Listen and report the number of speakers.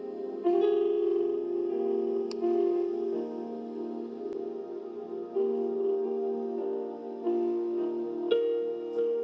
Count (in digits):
0